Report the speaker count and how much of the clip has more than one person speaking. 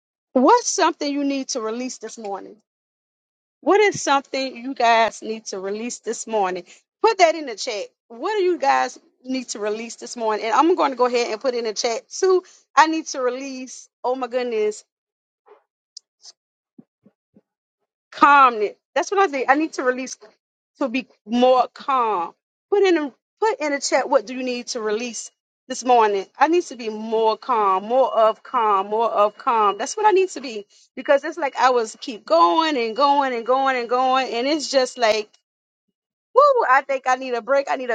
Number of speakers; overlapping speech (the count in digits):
1, no overlap